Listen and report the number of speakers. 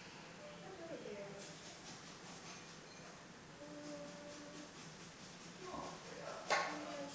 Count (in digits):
1